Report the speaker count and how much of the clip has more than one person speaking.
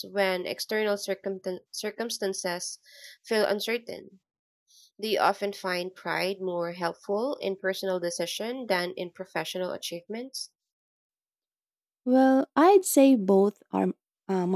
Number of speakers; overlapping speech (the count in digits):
2, no overlap